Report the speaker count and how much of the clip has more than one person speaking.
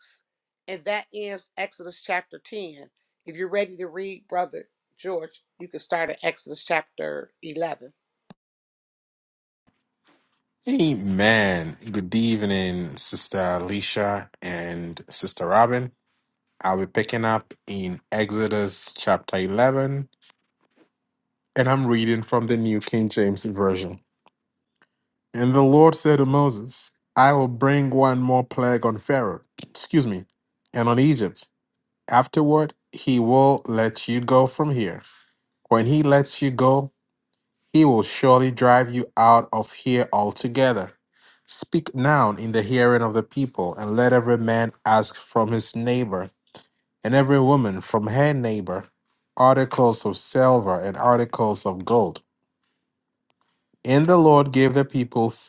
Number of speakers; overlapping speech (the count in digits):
2, no overlap